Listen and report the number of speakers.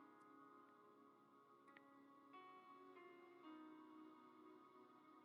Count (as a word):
zero